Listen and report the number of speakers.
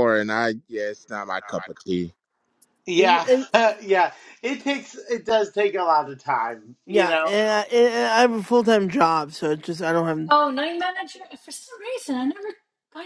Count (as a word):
four